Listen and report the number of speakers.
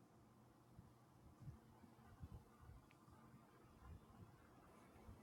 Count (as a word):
zero